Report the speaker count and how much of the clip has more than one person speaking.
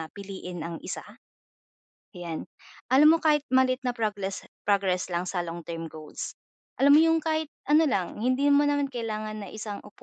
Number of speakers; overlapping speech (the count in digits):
1, no overlap